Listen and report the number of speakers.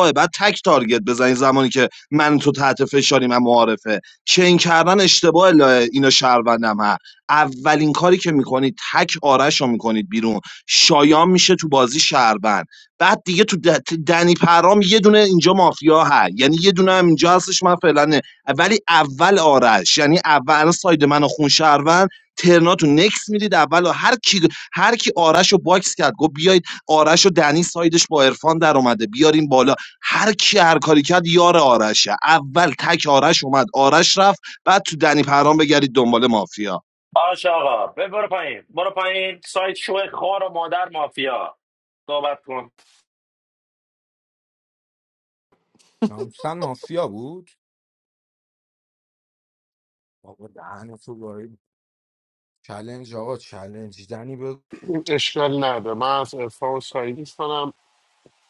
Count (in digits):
4